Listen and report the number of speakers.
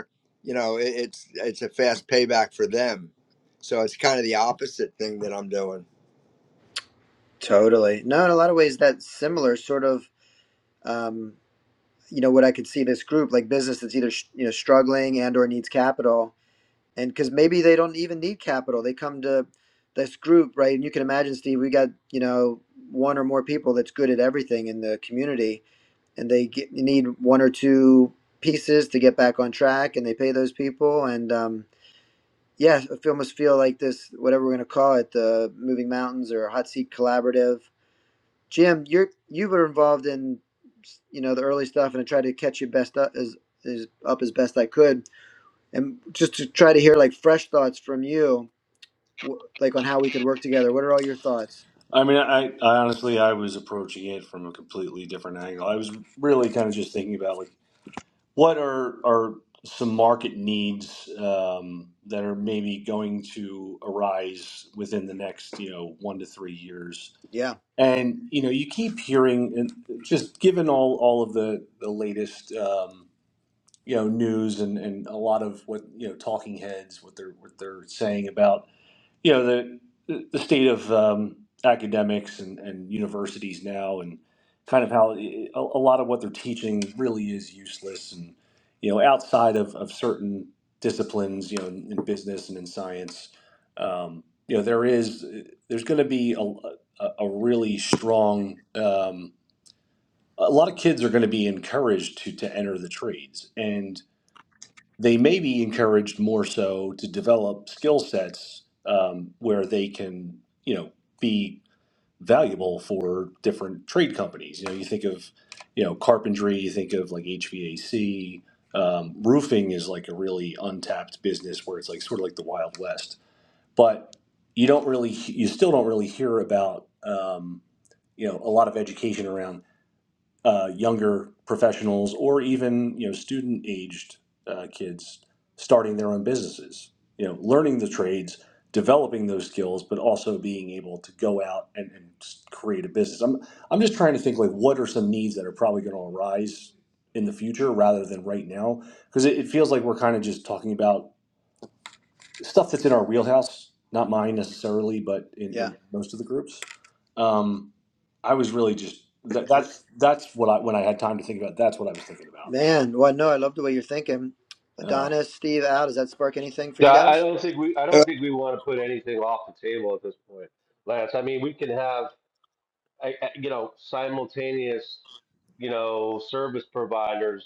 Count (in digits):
4